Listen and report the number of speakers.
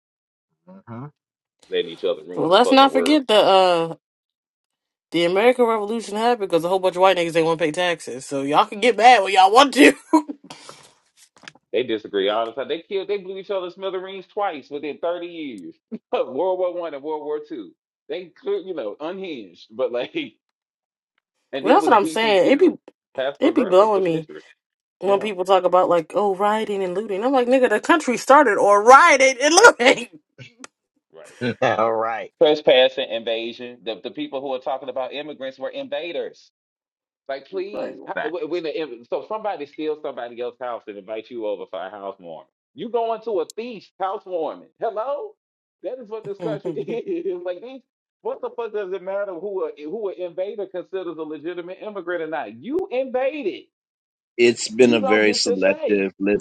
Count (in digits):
4